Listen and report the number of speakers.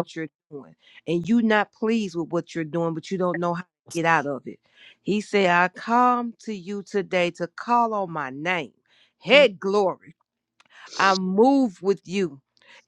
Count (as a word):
one